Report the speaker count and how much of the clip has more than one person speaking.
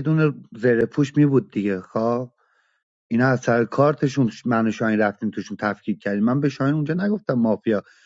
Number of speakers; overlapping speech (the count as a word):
one, no overlap